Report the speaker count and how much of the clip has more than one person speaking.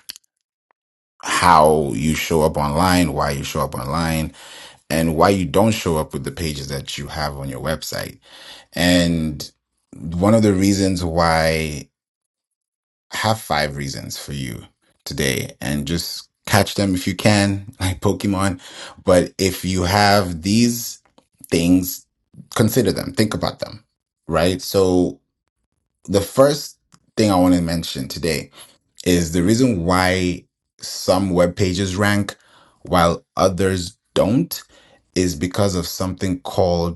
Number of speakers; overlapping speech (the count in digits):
1, no overlap